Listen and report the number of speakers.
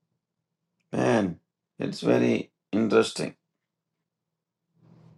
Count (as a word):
one